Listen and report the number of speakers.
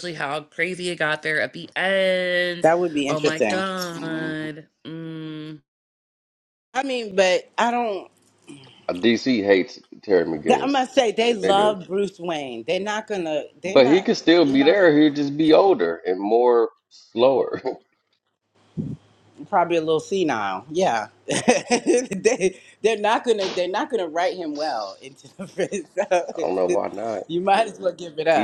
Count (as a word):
three